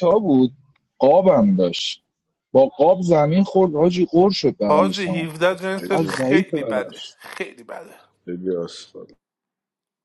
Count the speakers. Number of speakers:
3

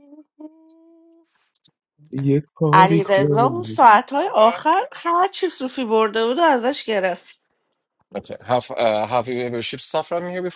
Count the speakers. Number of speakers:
3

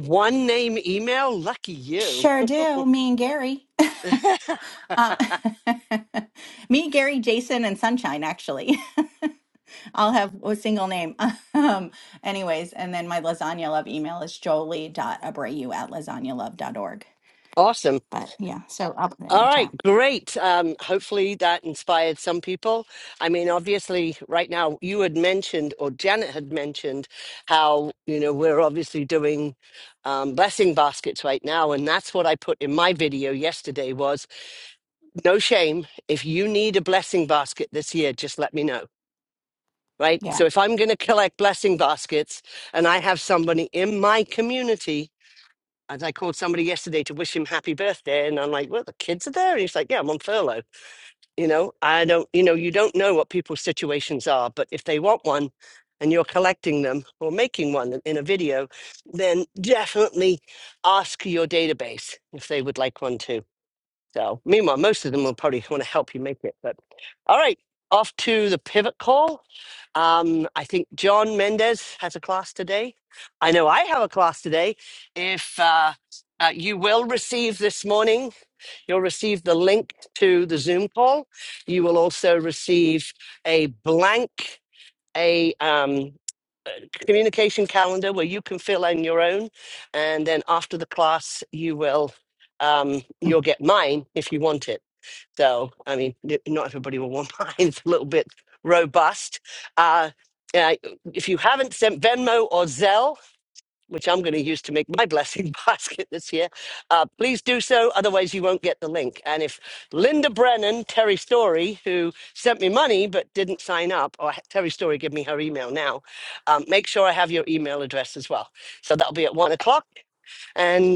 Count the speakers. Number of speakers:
2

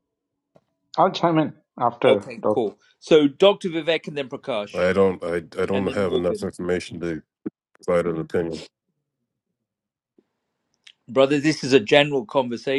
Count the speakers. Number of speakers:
3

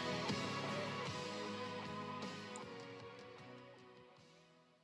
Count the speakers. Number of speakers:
0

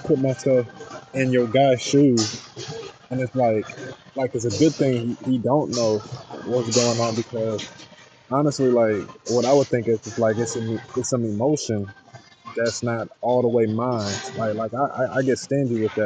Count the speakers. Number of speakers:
1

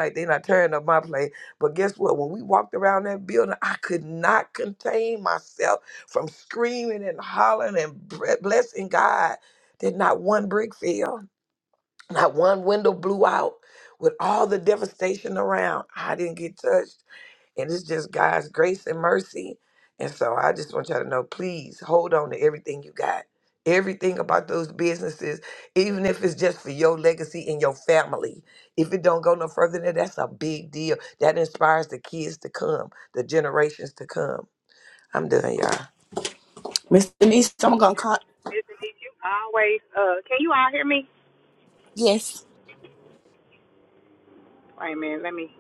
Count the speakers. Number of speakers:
3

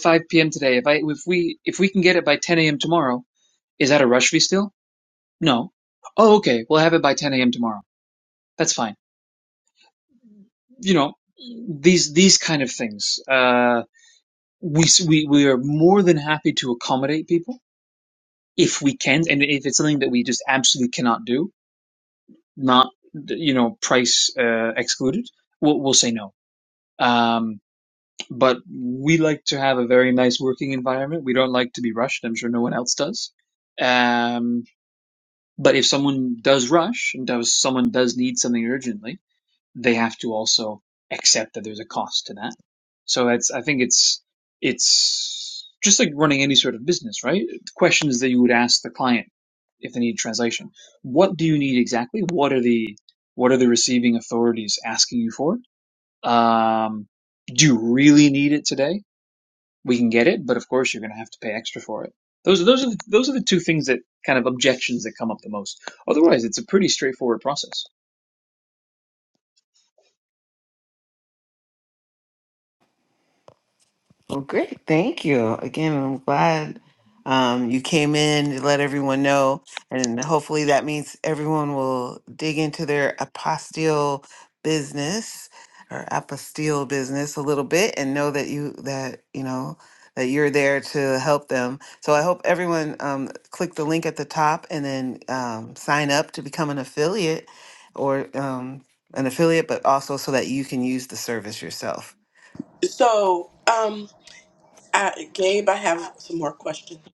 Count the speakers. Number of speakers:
3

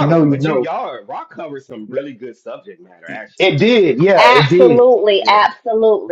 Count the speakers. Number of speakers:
3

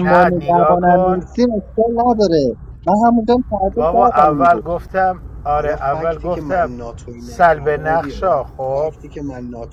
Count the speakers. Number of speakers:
3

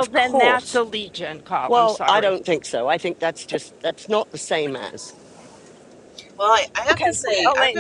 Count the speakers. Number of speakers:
3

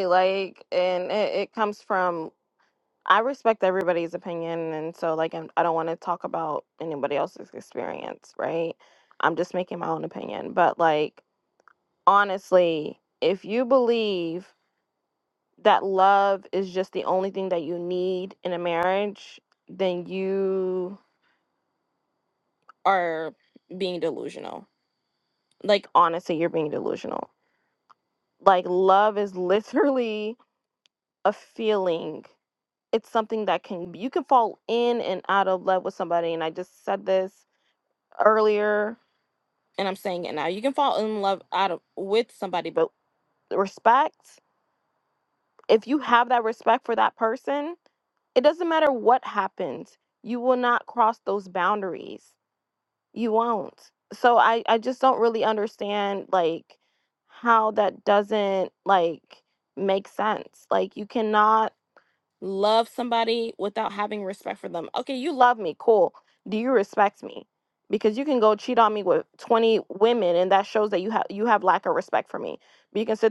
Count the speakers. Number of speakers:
1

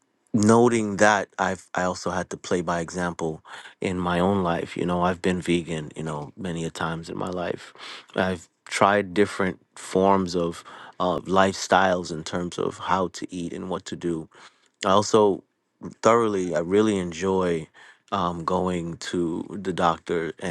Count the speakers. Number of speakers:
1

